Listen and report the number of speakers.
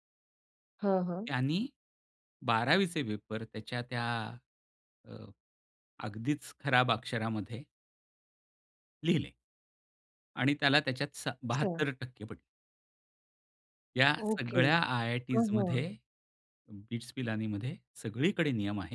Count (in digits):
2